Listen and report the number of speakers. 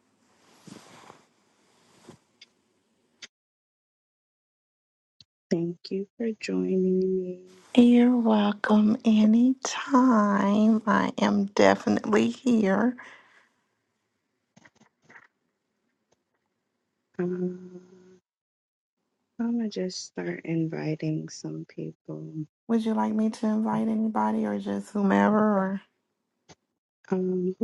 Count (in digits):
2